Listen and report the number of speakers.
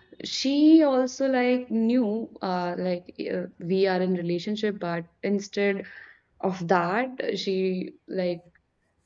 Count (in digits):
1